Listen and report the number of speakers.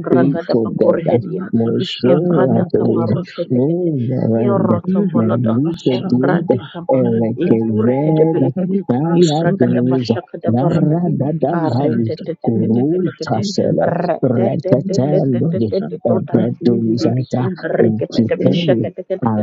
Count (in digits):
3